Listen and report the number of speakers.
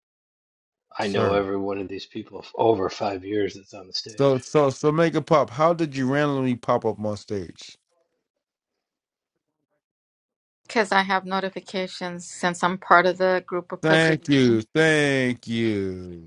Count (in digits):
3